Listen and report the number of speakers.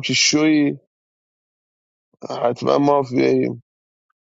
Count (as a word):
one